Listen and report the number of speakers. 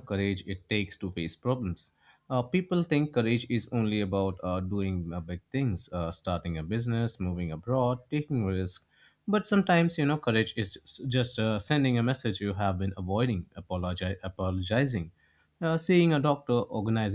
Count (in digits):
1